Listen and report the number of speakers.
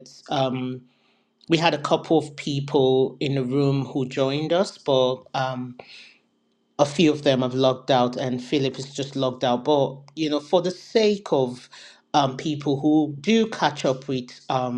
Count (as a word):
one